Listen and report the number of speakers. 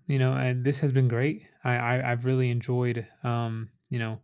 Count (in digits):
1